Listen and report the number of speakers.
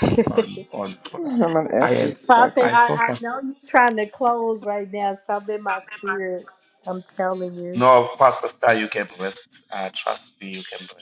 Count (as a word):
three